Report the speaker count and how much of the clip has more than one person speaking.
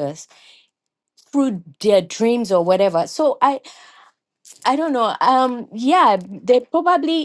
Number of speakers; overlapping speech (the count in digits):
1, no overlap